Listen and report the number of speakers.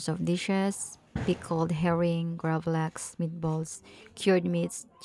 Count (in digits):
1